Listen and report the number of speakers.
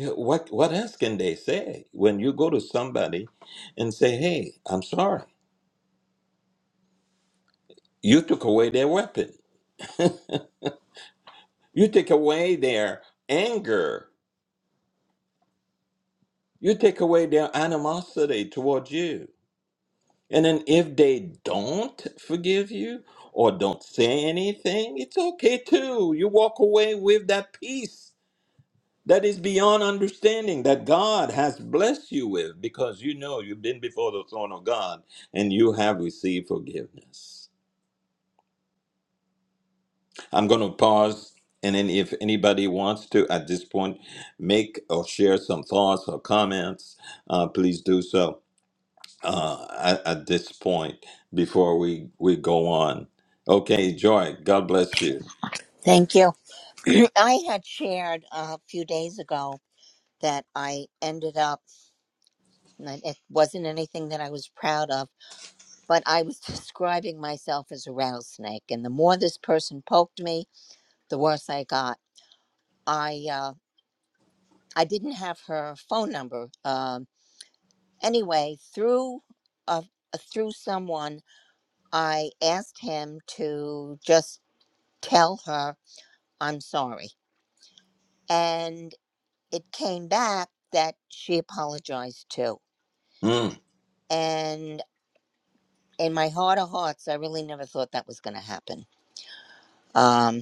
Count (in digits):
2